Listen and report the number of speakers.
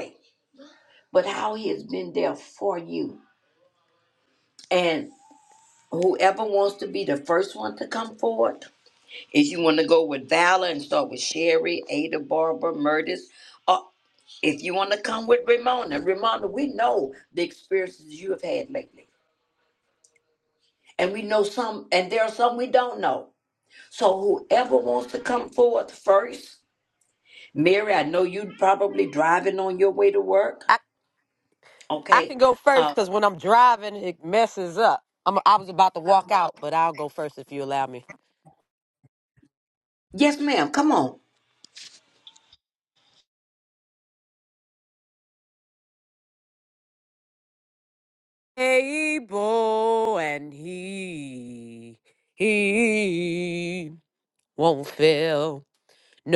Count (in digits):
2